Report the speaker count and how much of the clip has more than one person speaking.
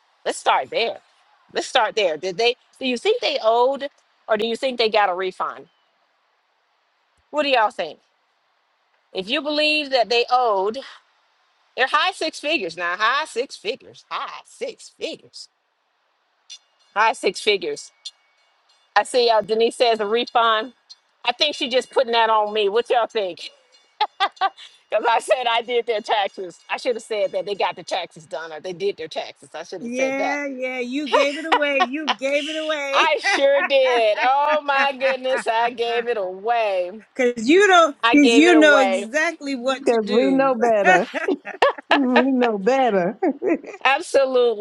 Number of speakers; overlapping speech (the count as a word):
three, about 6%